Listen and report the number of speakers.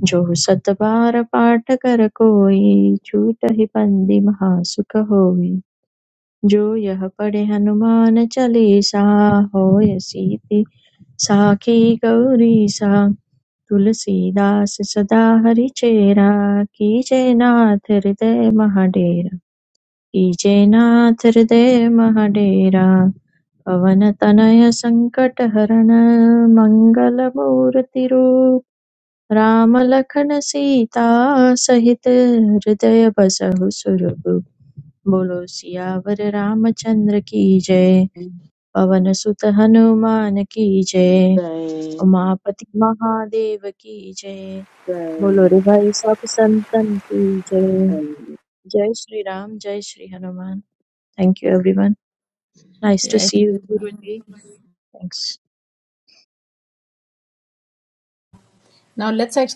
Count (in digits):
3